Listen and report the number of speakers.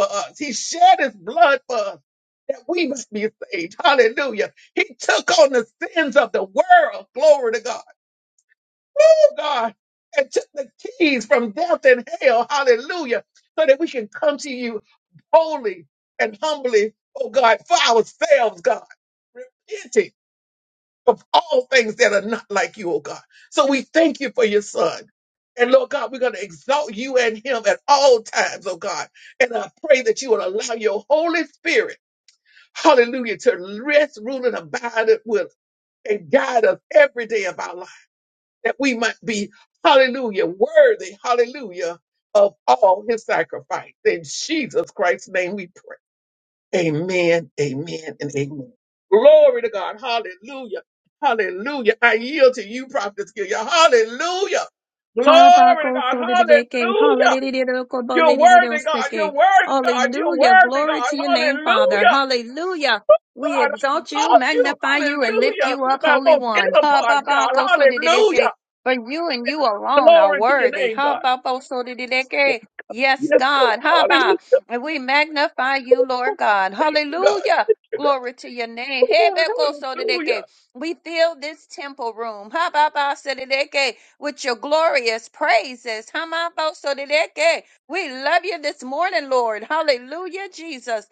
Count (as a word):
two